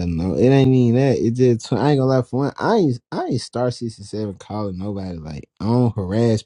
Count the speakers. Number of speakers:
one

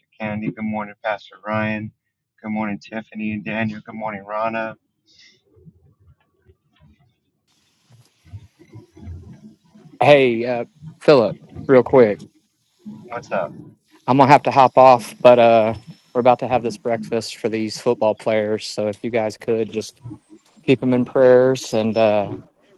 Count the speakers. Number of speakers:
two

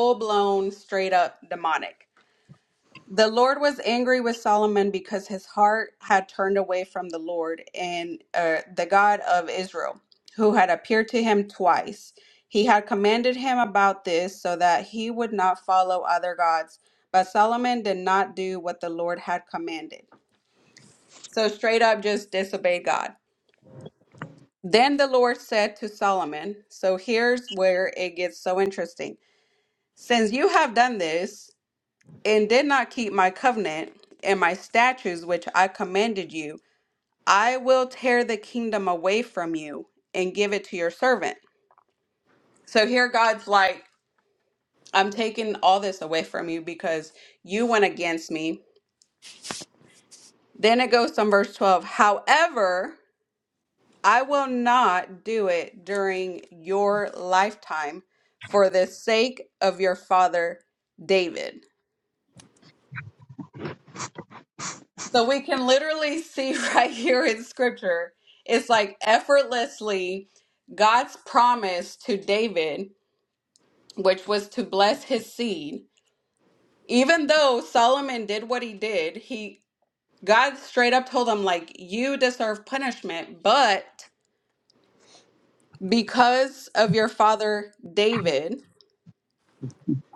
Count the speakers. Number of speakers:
one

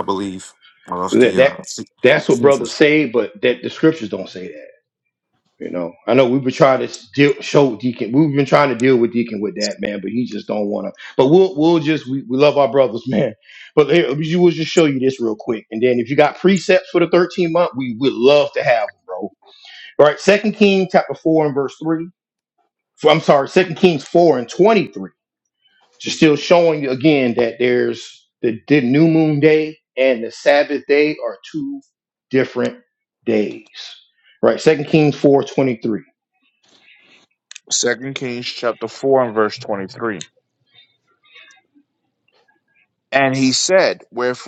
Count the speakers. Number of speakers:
three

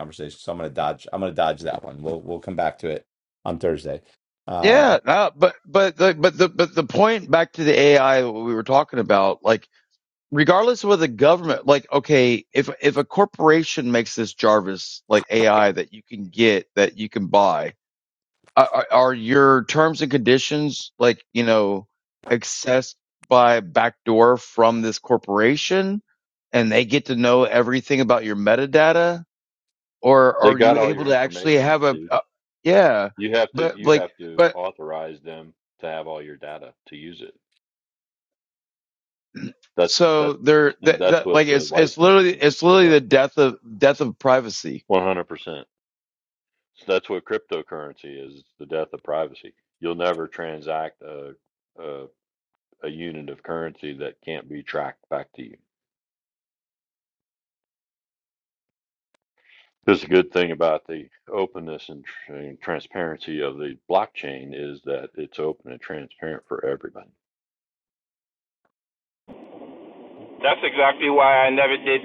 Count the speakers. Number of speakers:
four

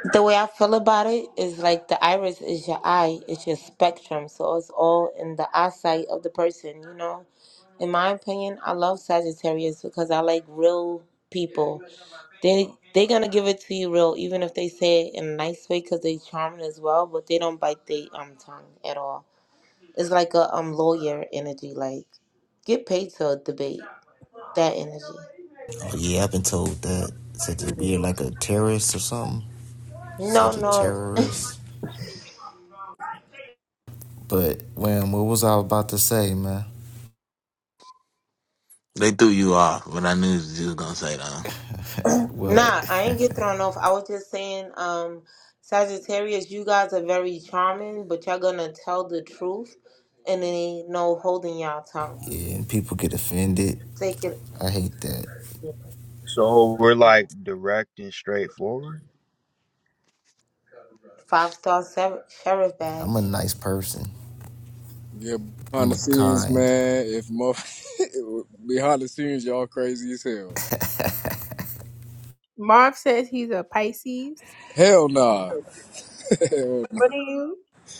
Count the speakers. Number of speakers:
six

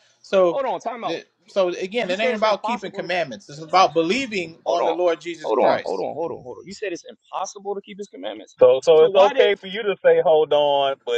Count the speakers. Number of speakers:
three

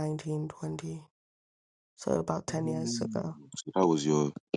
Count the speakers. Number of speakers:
two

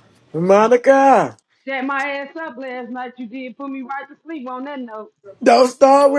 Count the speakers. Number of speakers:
two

